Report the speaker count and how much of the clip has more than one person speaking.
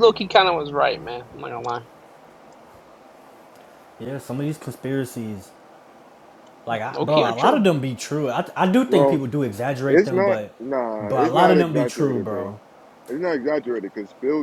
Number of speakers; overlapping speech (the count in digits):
3, about 21%